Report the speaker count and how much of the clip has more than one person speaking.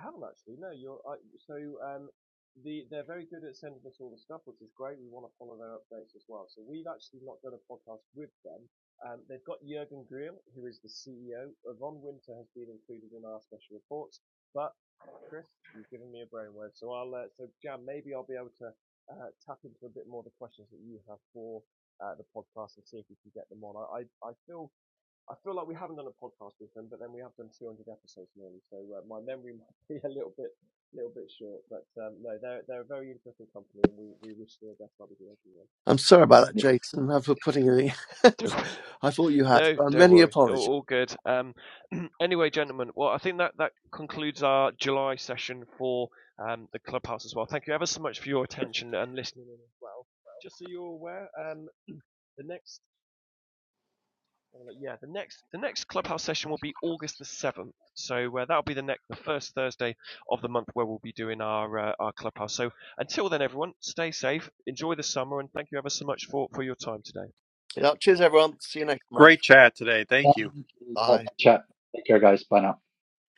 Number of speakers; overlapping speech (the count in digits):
4, about 2%